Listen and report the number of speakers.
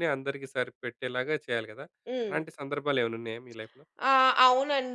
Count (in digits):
2